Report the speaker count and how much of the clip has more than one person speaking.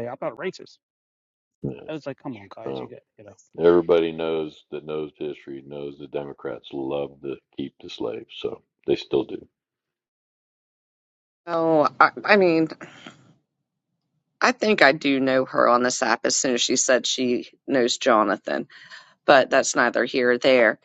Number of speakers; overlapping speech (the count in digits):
3, about 1%